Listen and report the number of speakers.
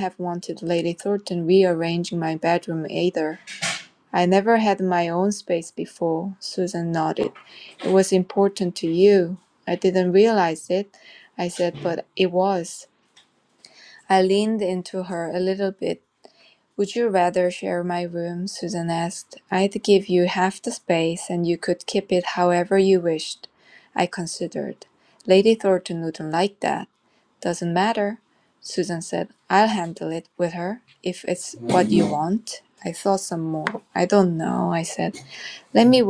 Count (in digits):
1